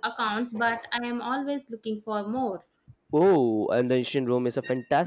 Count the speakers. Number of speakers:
2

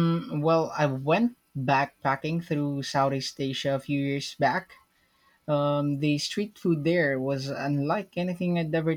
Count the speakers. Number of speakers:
1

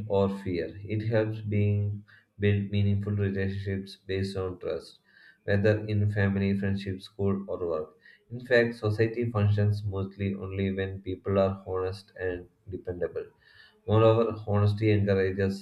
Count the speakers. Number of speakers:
1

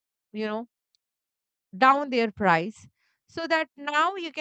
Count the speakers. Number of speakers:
1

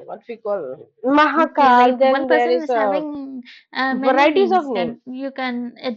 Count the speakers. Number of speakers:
2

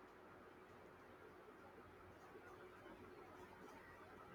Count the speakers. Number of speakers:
0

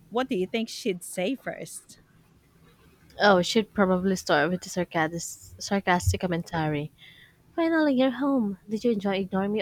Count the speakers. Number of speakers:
2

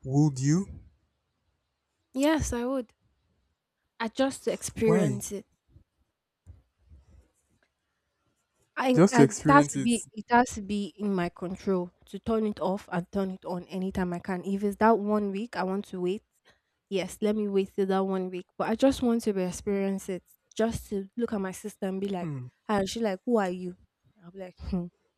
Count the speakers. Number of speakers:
2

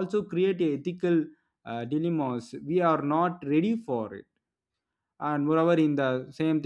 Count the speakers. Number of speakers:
1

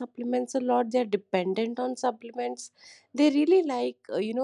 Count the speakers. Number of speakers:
1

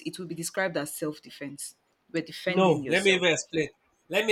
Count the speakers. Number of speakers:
2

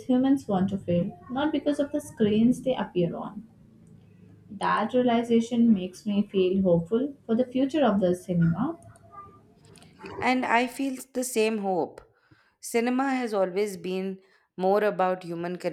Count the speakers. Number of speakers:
2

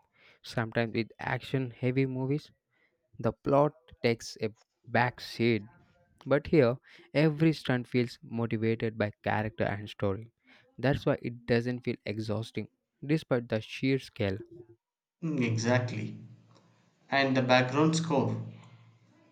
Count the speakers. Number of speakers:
2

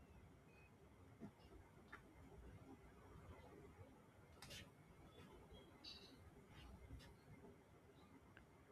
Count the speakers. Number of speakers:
0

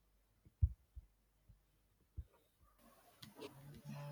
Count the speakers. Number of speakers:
0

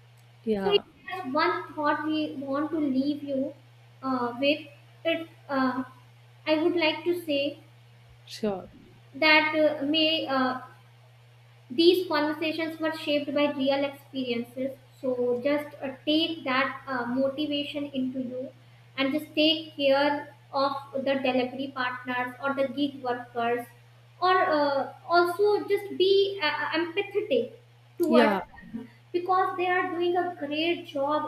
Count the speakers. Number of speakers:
2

